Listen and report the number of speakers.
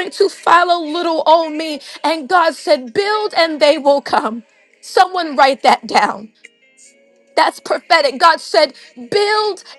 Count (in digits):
1